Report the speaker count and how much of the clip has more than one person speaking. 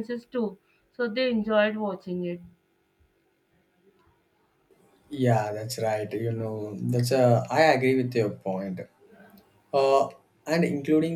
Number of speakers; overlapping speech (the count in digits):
2, no overlap